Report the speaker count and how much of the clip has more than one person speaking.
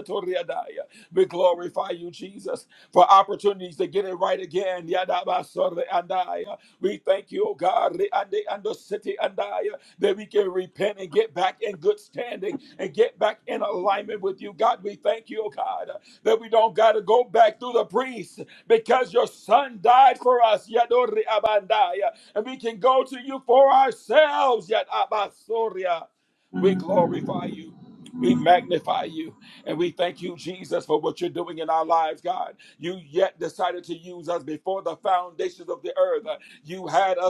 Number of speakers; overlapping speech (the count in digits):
1, no overlap